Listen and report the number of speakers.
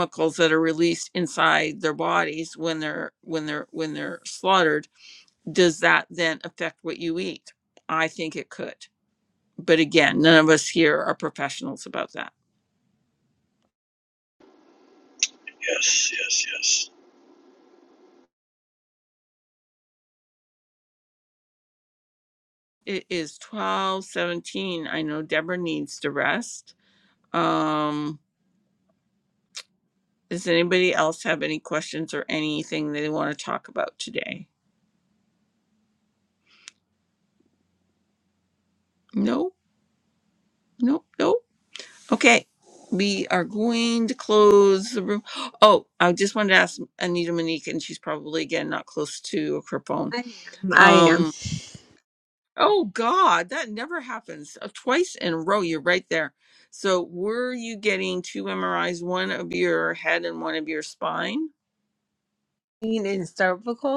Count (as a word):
three